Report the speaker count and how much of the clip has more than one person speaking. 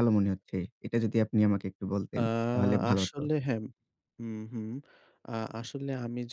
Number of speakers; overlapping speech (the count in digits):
2, about 7%